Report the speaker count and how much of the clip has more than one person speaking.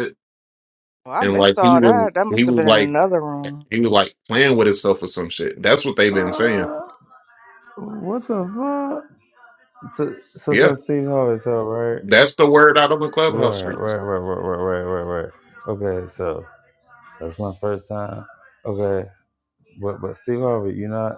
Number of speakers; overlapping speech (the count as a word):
three, about 14%